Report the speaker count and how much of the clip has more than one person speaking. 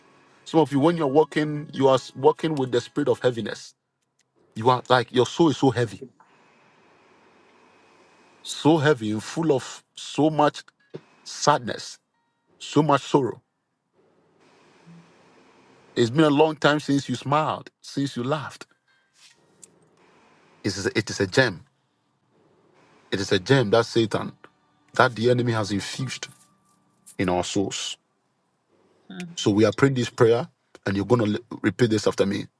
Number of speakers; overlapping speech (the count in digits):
1, no overlap